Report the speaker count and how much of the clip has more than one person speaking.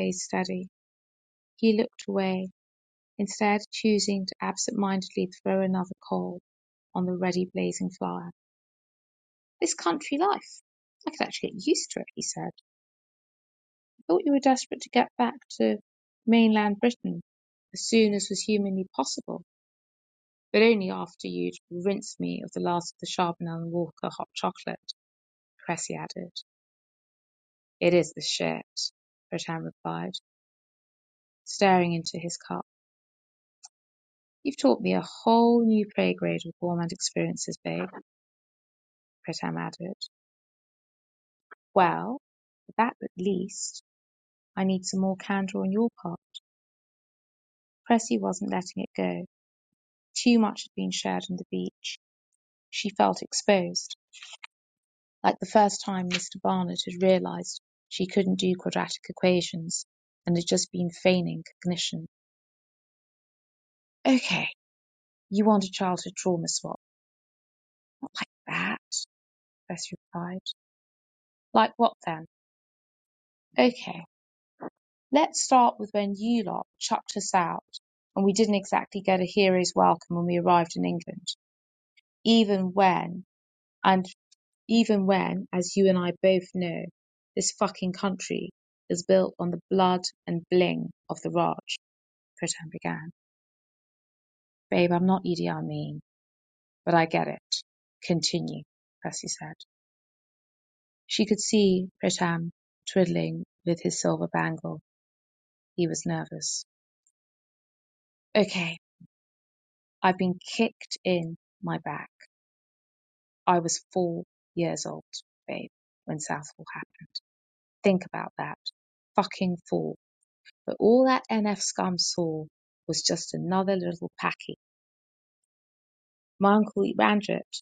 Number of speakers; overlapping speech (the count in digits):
1, no overlap